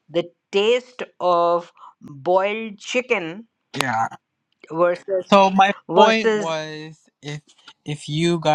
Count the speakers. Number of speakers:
two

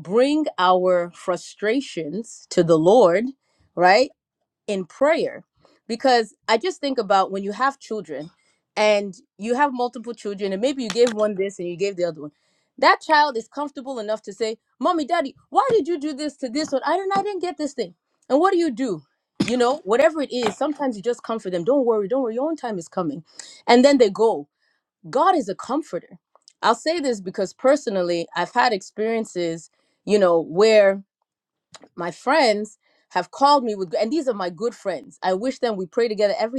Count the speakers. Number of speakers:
one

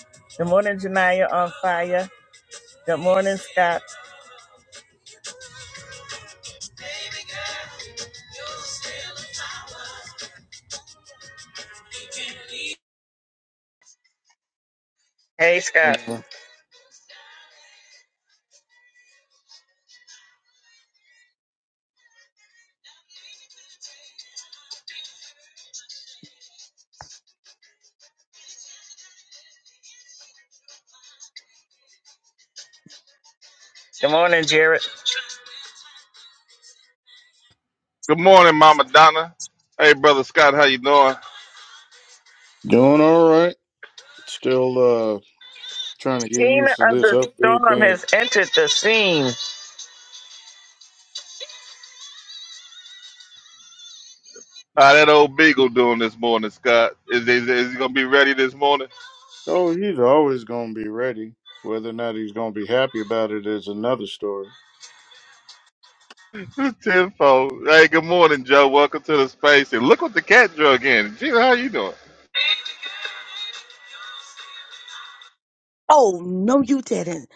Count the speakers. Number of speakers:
four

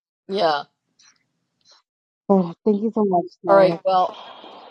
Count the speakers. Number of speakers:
two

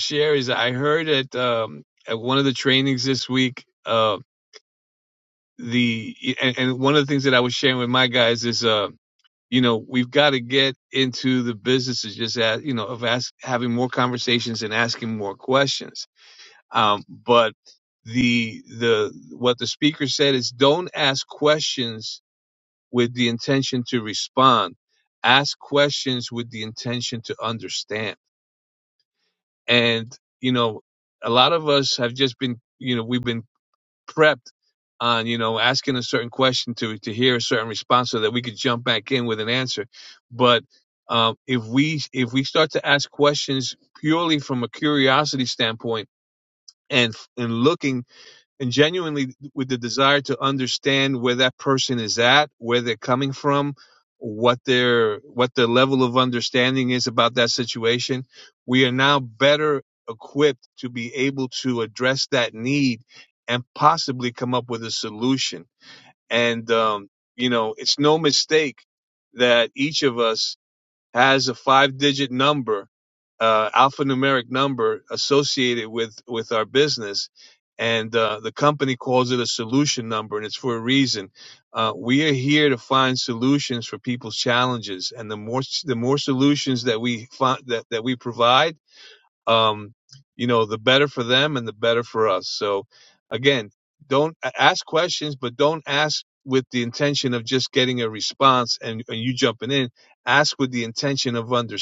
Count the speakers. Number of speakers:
one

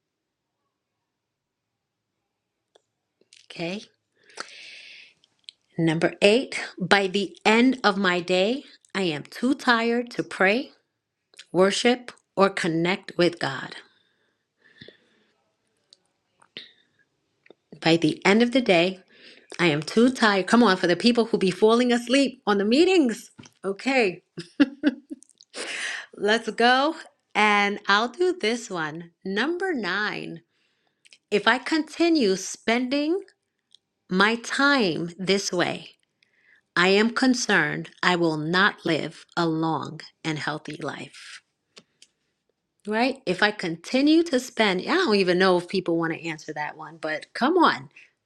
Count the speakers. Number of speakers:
one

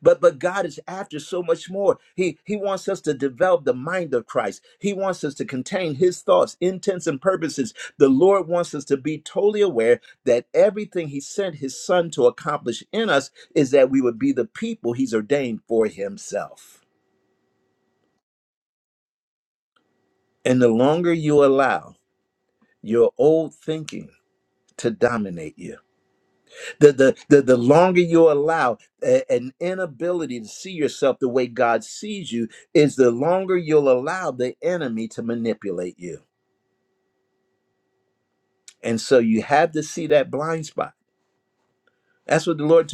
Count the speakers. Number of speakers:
one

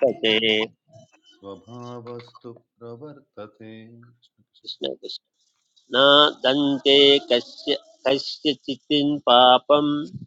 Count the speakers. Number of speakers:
two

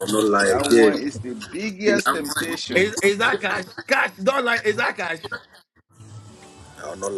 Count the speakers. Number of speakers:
three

